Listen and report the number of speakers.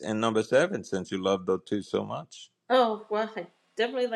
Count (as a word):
two